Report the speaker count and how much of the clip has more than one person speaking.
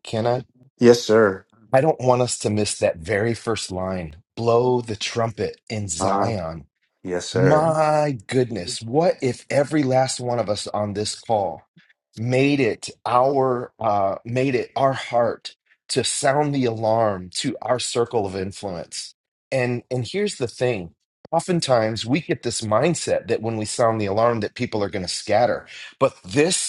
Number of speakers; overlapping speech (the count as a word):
two, about 3%